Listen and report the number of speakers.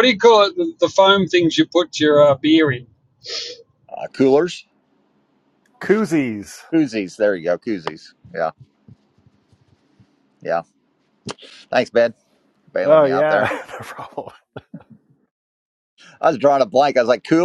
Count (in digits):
3